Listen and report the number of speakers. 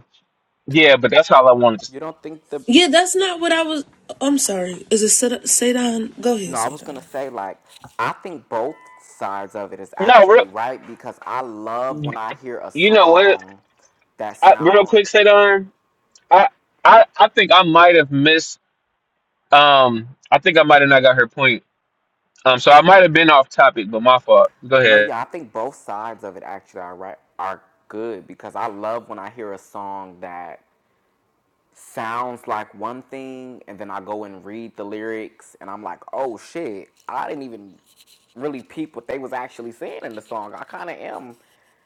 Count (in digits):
3